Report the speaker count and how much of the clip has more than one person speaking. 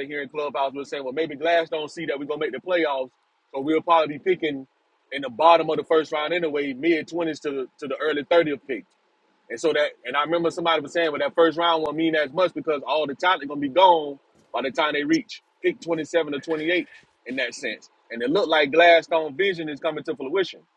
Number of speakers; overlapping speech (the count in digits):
1, no overlap